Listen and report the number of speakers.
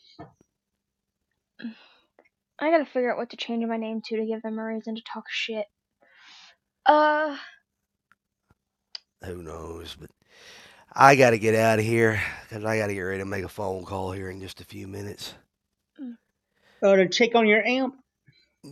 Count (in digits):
3